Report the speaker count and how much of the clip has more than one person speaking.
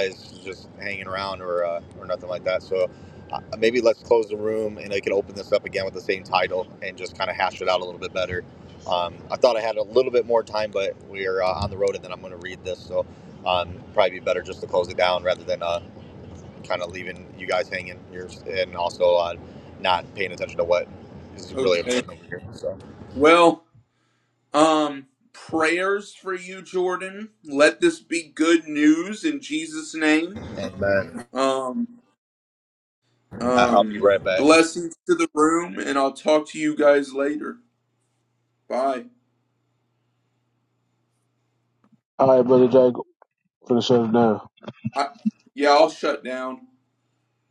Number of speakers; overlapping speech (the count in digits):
3, about 2%